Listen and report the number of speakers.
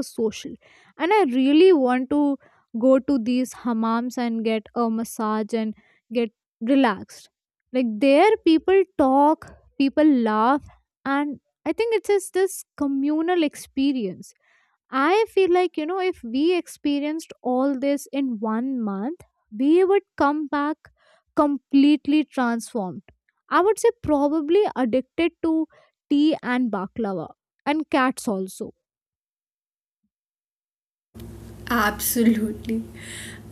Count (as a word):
two